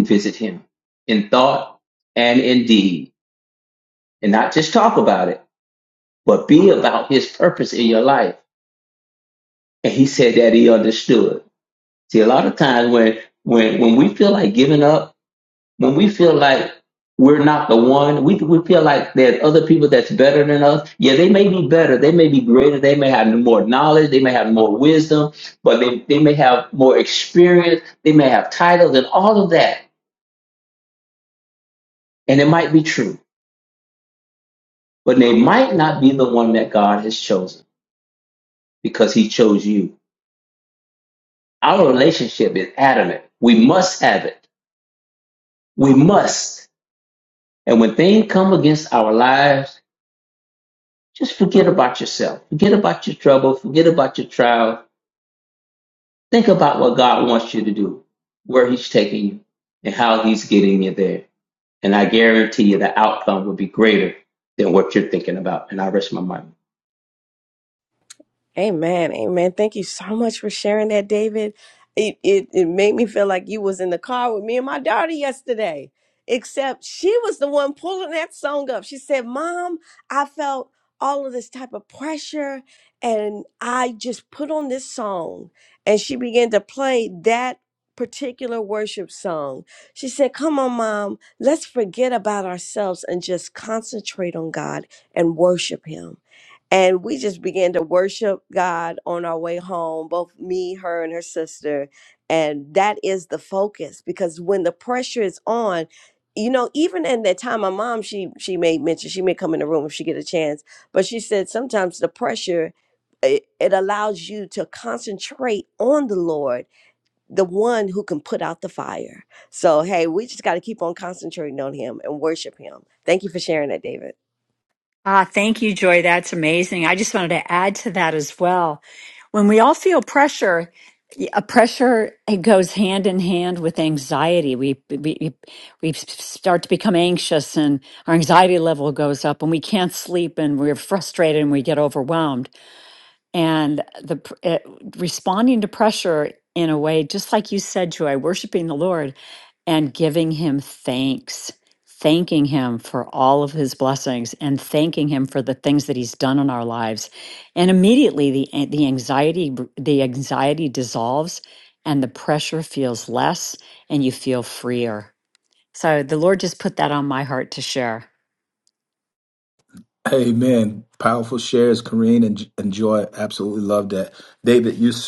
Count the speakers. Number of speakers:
four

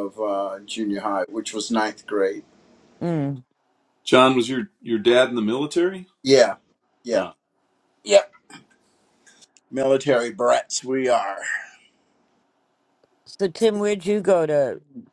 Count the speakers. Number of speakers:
three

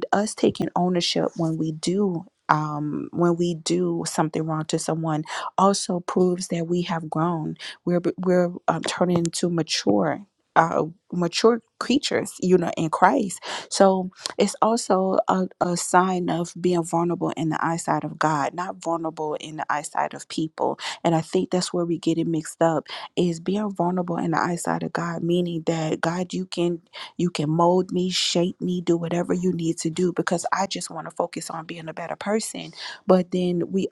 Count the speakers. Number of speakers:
one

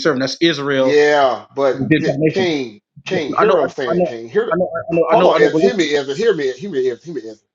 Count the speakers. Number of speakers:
two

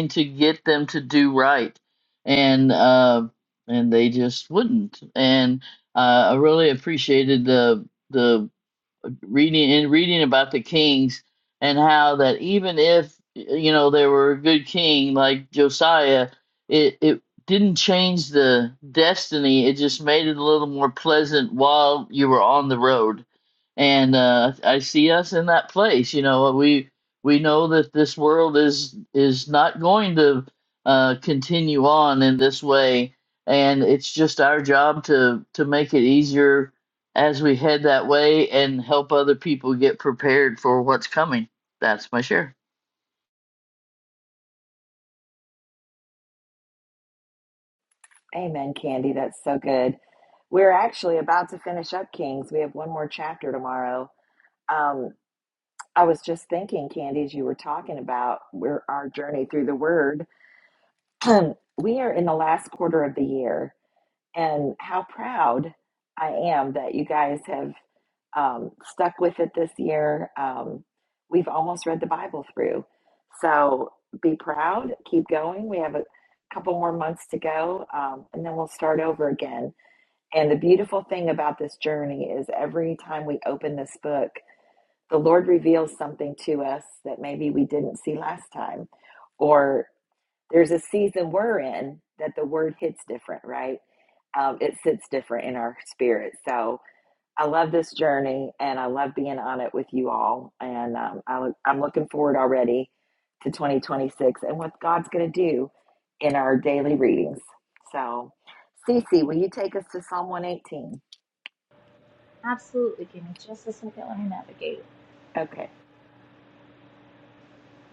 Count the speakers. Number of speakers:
three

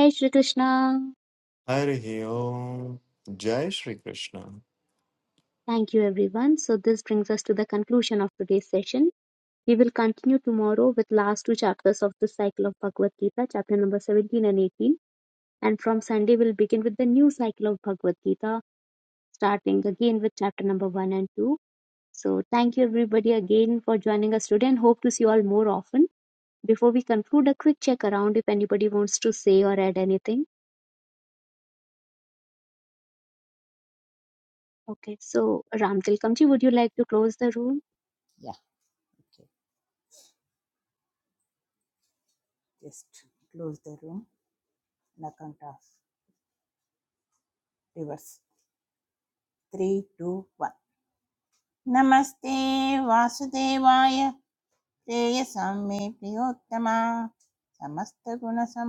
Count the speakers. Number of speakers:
three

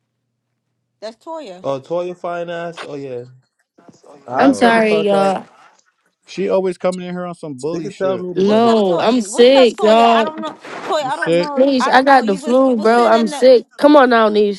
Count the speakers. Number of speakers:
four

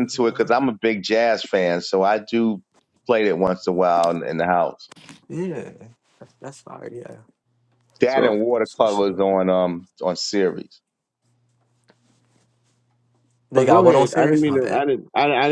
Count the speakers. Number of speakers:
three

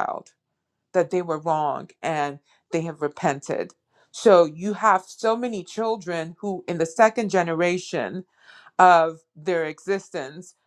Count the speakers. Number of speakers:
one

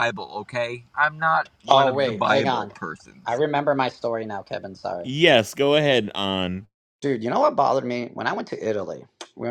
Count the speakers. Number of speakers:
three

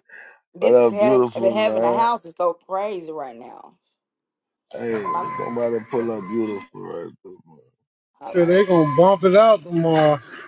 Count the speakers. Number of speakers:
three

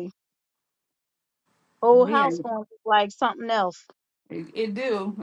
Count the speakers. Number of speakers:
two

